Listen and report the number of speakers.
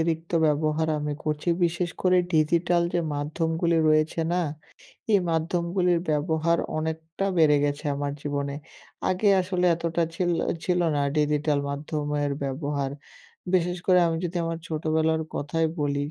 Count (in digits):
1